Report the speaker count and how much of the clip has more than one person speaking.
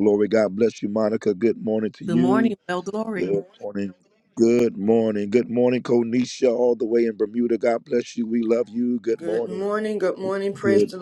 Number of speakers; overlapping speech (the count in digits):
3, about 10%